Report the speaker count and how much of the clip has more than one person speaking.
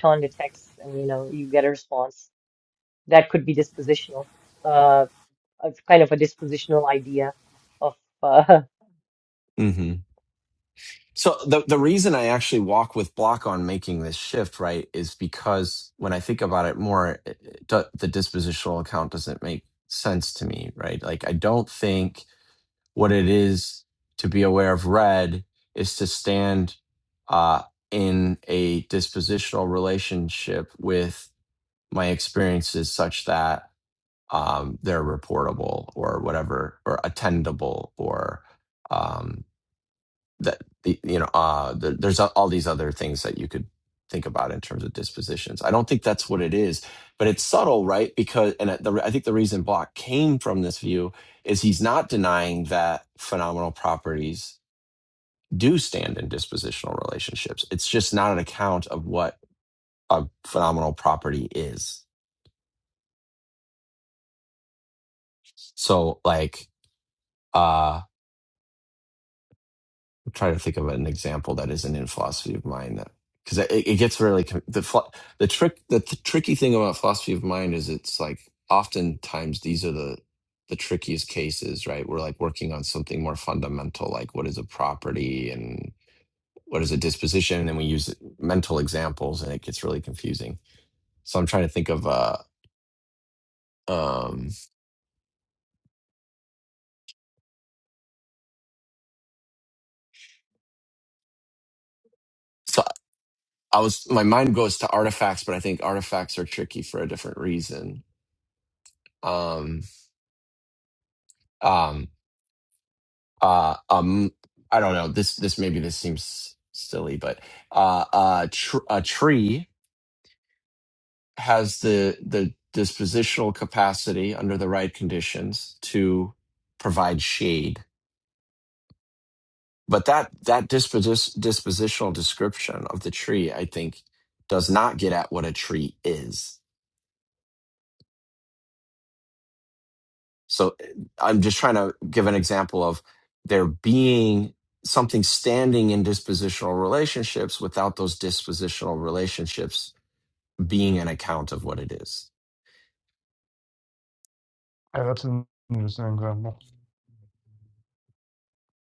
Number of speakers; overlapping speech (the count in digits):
3, no overlap